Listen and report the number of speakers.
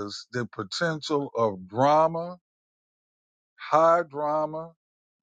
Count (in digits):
1